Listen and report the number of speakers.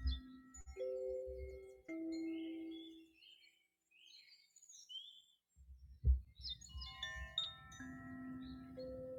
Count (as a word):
zero